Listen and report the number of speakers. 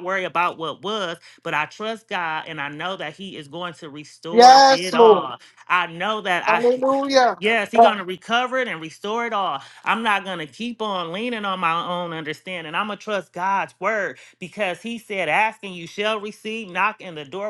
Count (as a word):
two